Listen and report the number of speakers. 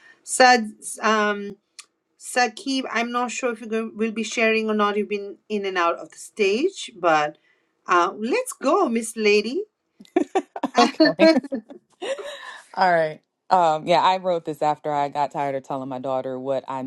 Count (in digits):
2